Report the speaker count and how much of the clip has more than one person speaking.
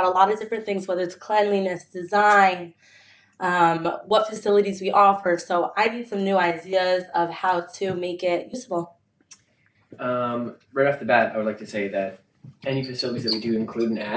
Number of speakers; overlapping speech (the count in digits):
2, no overlap